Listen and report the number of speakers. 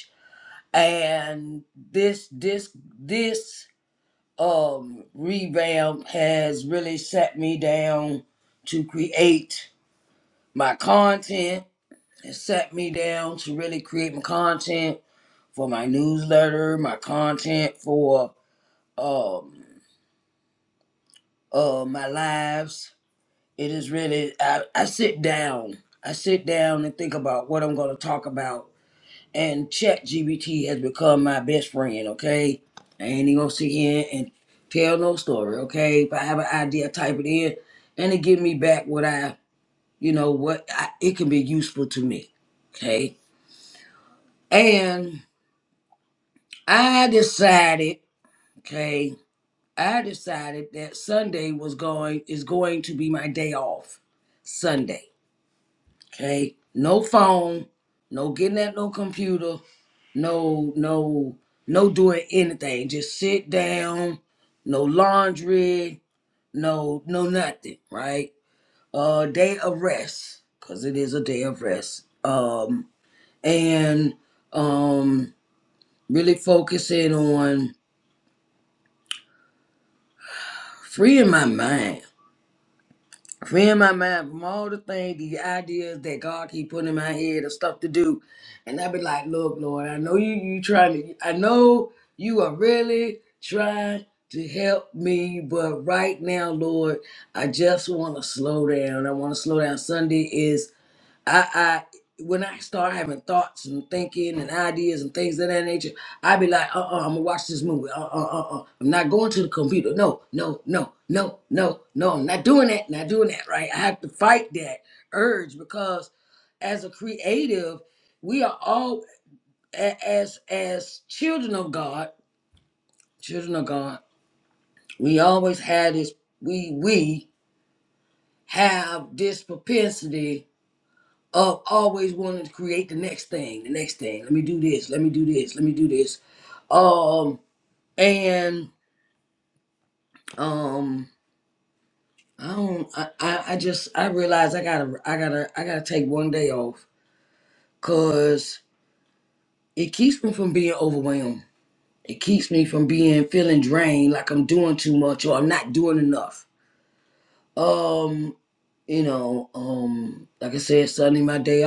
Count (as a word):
one